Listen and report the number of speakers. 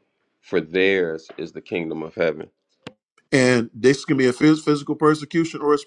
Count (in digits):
2